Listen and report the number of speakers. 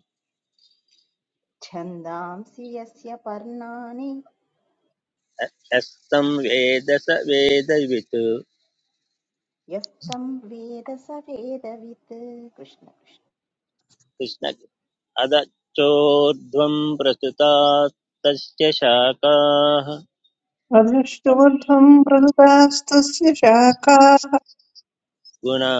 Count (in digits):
3